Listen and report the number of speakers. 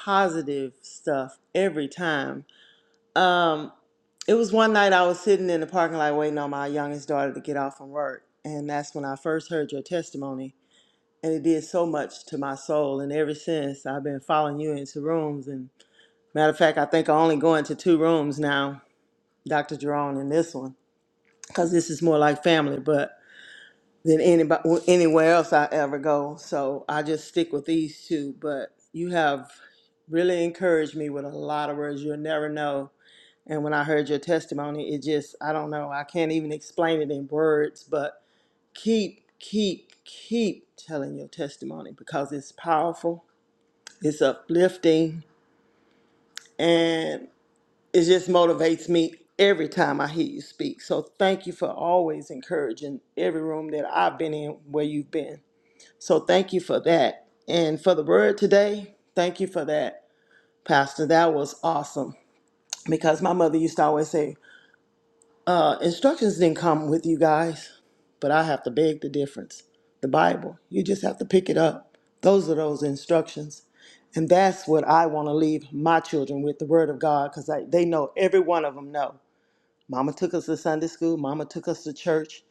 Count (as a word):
one